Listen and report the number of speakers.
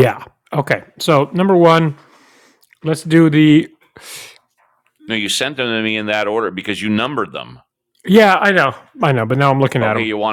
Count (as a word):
two